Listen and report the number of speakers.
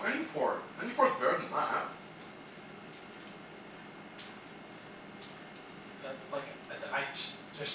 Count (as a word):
two